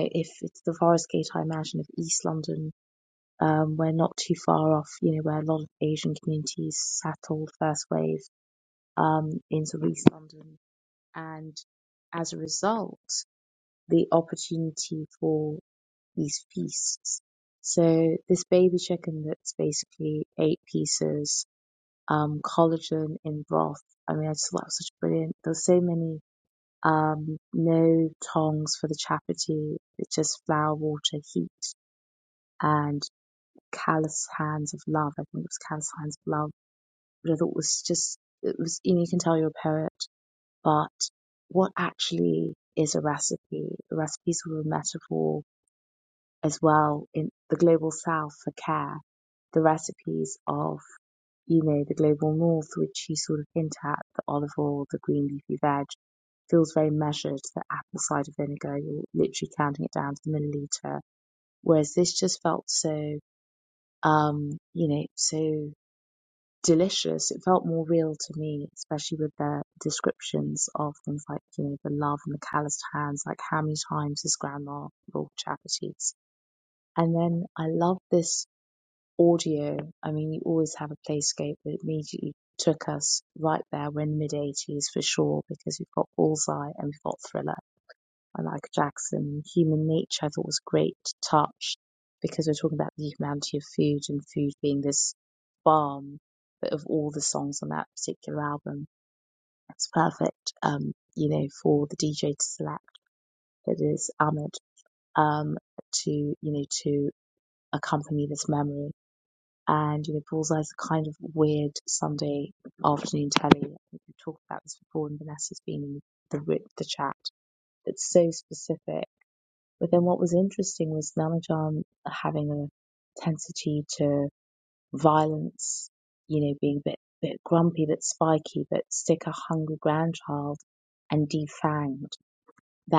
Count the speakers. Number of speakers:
one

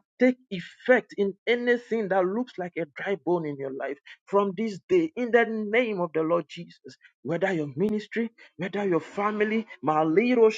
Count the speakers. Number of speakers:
one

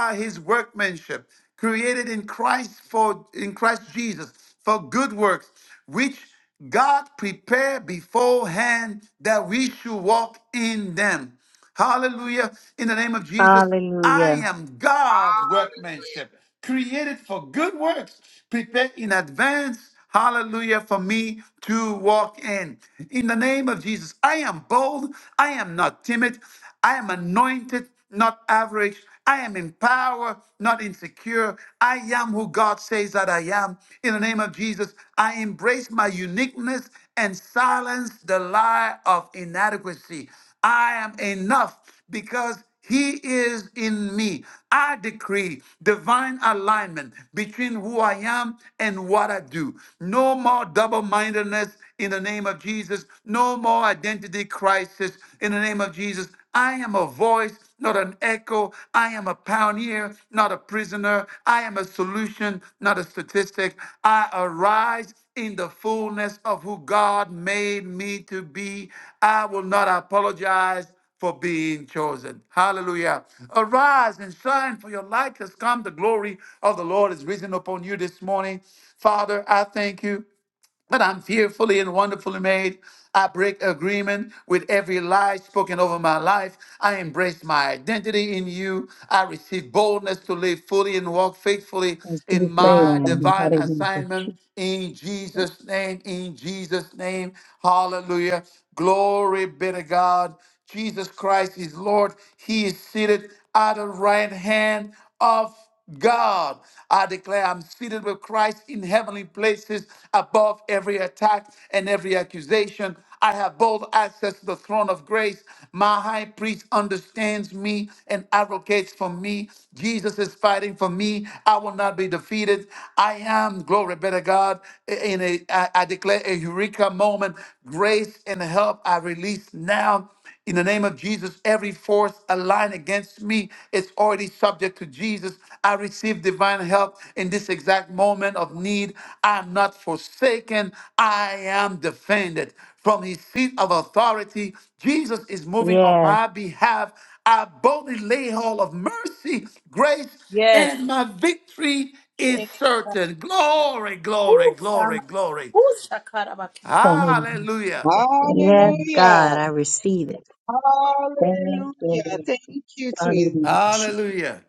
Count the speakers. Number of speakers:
five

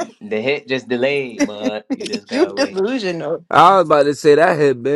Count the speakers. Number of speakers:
three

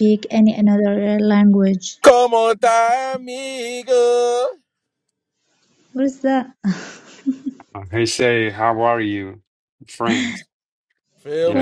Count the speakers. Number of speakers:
three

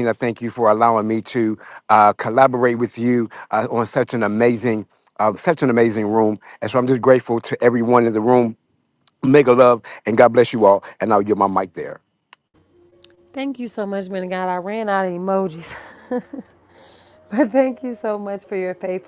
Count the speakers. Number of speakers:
two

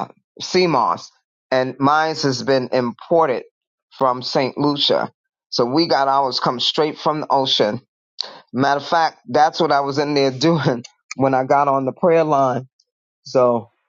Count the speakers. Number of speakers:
one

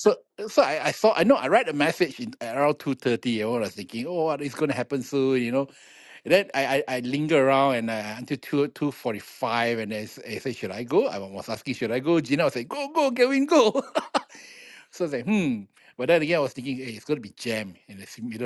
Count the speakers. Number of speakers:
one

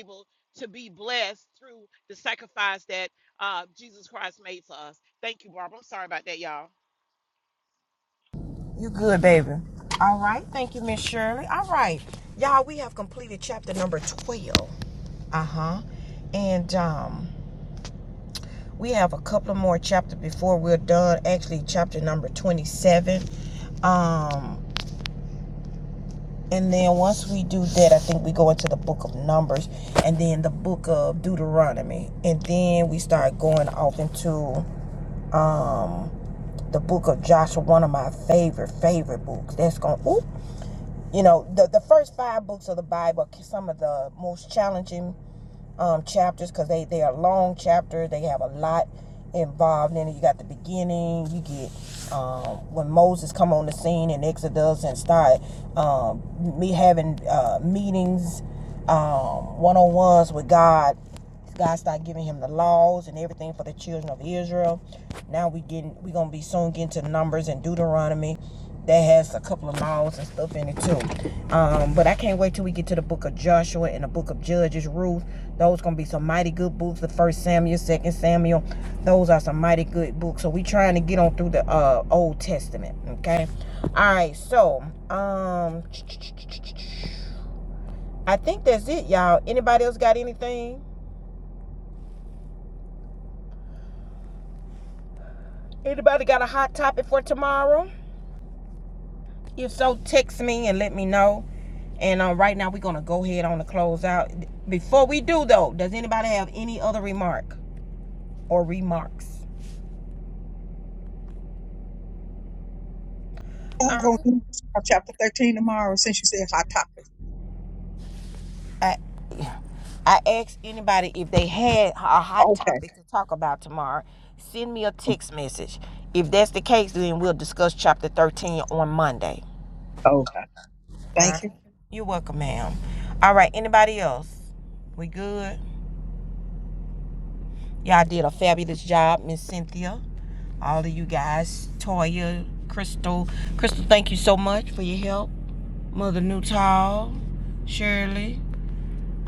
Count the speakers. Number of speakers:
three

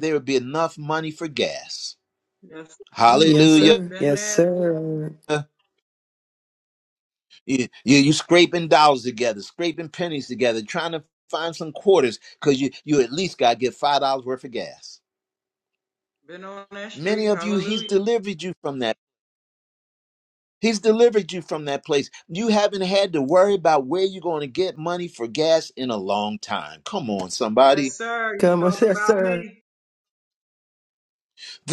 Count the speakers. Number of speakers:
three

